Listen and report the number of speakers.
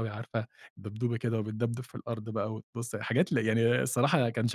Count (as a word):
one